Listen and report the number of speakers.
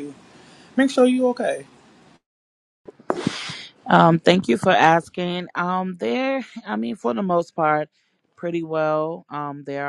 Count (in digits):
2